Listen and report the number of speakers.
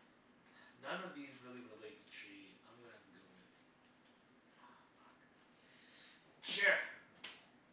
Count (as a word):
one